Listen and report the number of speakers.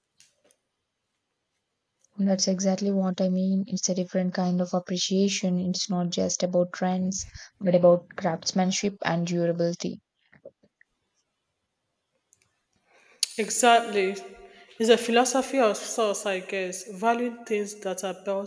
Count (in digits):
2